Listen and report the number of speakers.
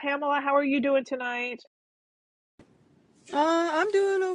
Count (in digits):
2